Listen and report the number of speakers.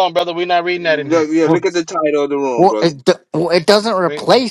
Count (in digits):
3